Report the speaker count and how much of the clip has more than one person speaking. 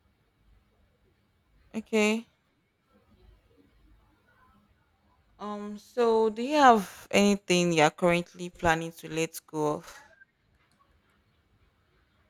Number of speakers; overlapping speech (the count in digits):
1, no overlap